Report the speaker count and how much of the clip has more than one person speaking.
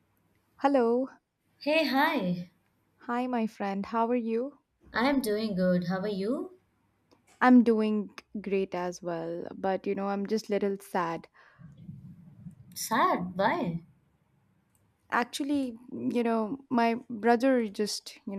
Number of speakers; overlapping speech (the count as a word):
two, no overlap